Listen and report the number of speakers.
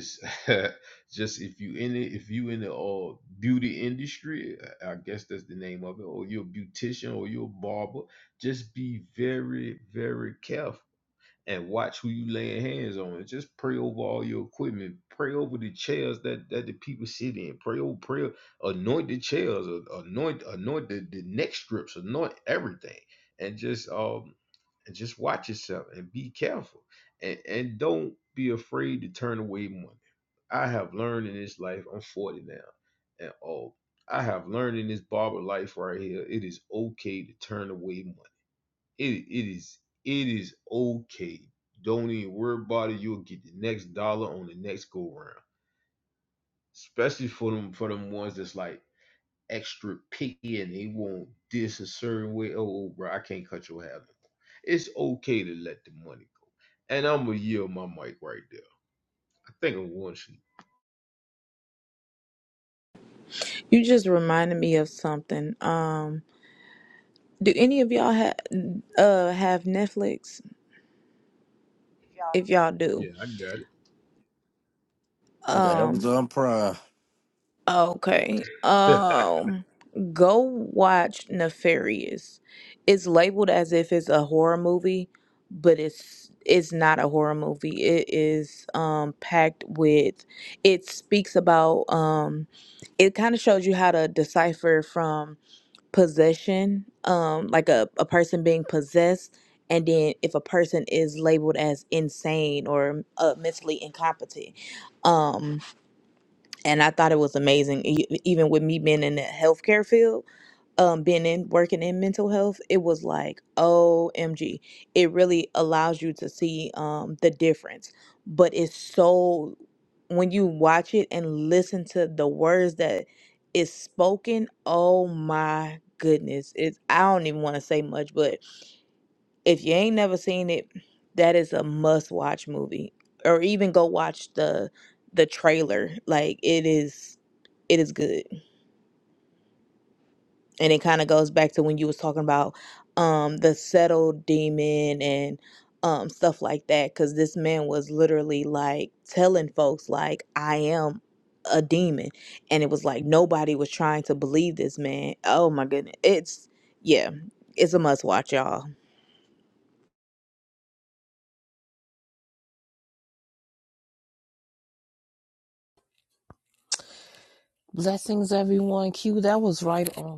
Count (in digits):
4